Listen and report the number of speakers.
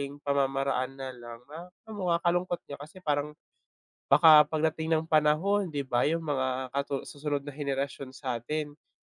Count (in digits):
1